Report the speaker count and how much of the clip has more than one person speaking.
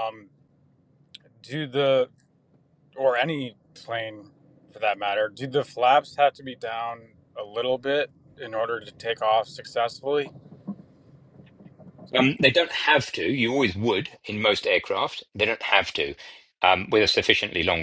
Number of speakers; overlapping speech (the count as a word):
two, no overlap